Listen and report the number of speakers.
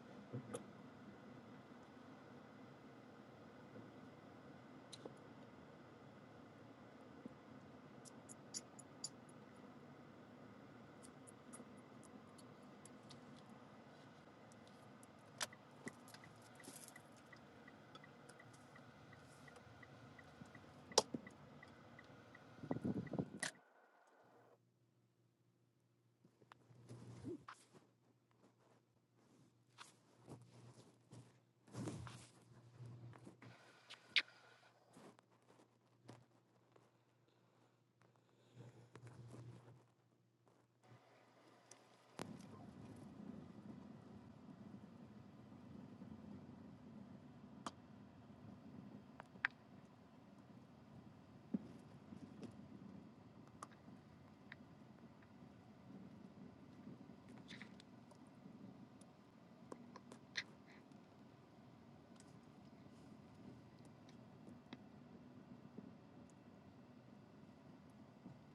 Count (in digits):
0